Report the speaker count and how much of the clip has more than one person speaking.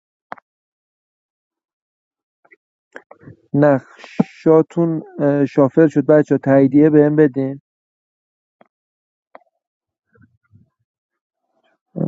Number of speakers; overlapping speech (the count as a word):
one, no overlap